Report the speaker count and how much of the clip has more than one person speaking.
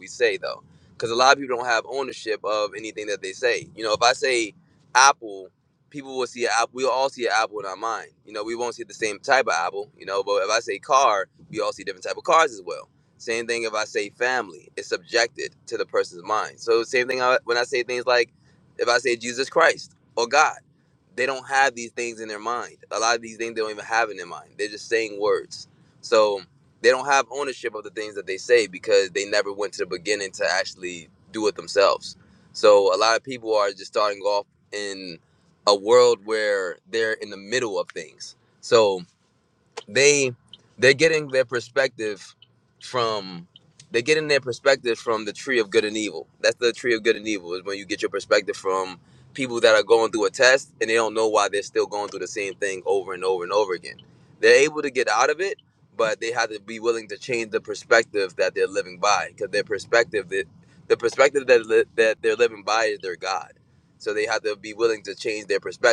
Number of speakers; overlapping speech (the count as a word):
one, no overlap